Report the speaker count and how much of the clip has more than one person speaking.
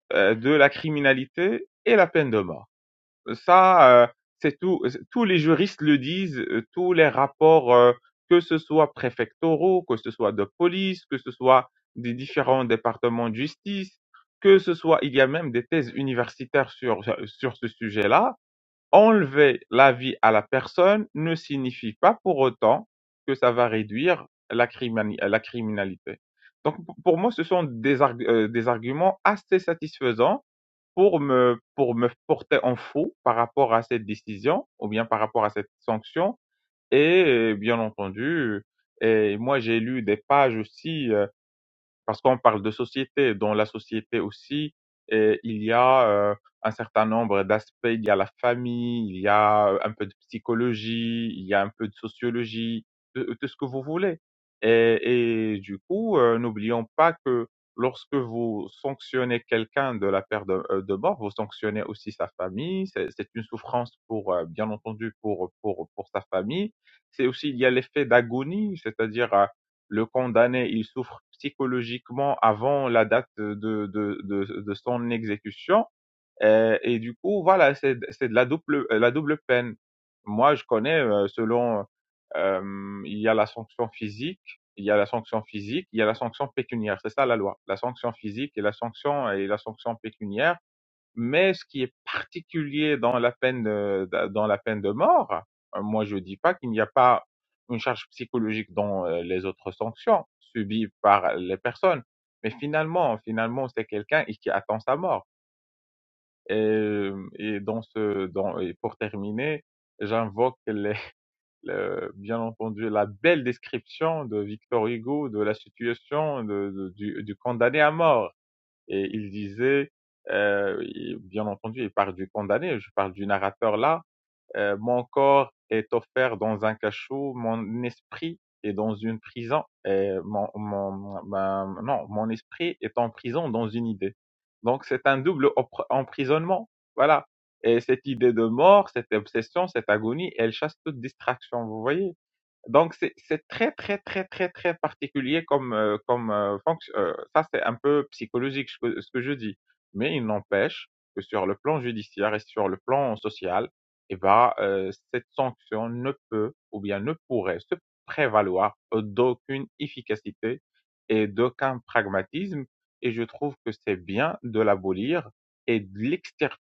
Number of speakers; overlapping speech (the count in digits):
1, no overlap